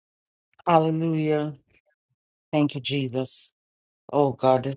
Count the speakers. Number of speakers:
1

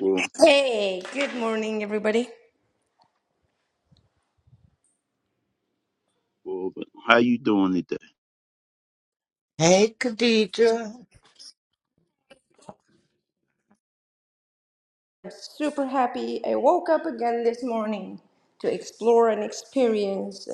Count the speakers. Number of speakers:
3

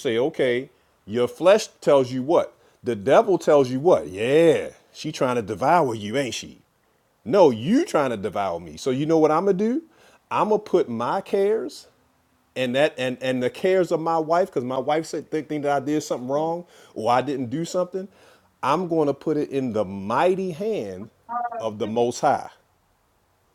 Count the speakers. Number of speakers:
1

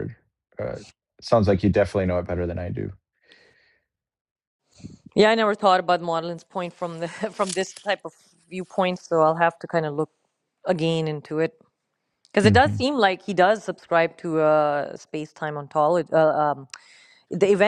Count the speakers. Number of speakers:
2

